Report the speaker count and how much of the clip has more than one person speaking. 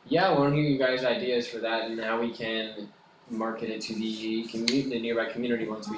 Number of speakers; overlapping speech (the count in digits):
1, no overlap